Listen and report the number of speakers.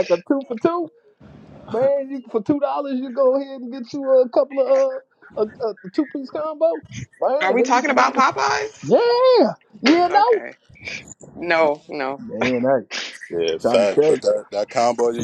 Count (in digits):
3